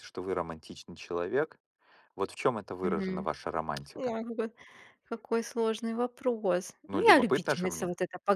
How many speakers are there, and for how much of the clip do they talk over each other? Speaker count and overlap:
two, about 17%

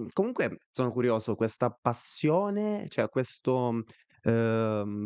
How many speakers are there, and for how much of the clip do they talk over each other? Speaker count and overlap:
one, no overlap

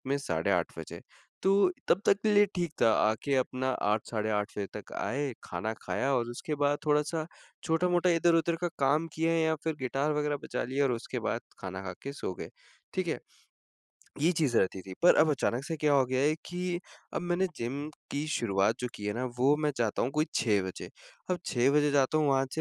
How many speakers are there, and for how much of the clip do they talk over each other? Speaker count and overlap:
one, no overlap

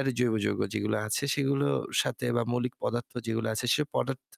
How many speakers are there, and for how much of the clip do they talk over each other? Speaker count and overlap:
one, no overlap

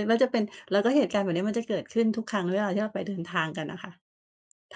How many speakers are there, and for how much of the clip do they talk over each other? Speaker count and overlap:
one, no overlap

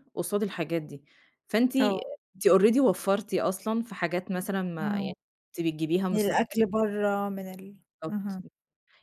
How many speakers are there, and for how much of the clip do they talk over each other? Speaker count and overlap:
two, about 8%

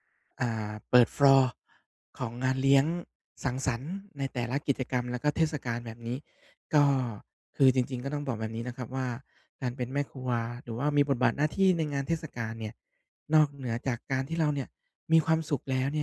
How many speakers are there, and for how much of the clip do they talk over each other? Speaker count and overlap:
one, no overlap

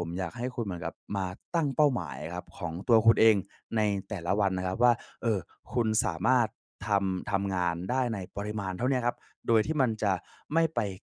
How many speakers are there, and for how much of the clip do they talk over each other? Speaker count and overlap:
one, no overlap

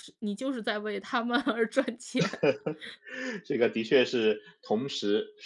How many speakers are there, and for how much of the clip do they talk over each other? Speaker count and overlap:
two, no overlap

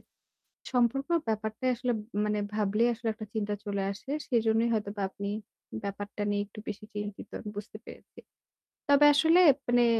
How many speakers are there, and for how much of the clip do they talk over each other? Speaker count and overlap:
one, no overlap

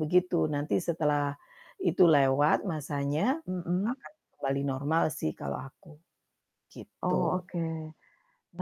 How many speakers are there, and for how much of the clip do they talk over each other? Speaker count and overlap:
two, about 6%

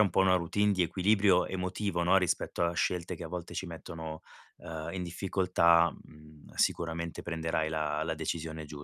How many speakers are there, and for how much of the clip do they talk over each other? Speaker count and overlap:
one, no overlap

